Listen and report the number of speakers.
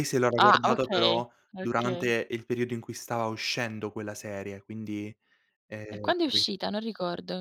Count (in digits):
2